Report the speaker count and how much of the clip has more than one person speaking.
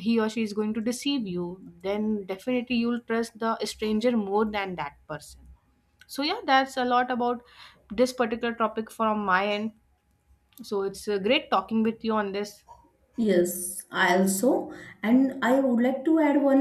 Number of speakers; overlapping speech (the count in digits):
2, no overlap